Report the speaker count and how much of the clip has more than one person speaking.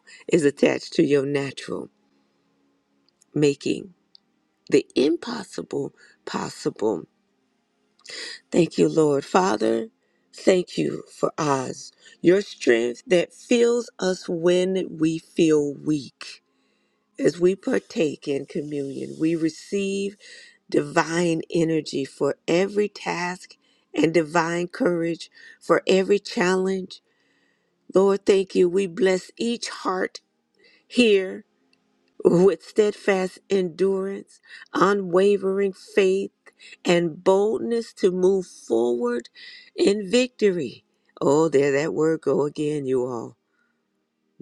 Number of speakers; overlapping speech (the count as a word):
one, no overlap